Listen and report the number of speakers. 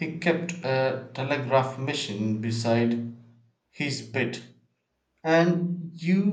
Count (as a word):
one